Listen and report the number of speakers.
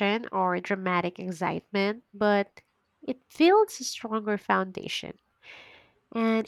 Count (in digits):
1